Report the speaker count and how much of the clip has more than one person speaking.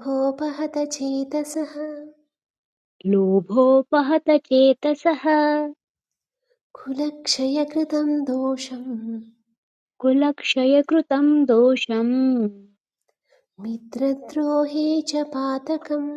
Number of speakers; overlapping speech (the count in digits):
2, no overlap